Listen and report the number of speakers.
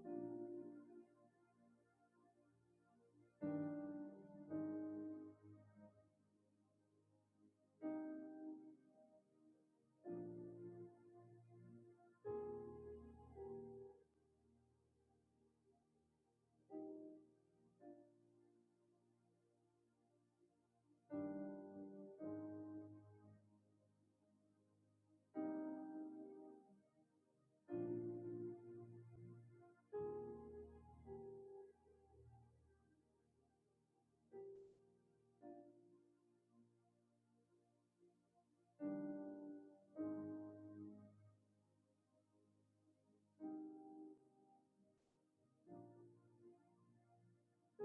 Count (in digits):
0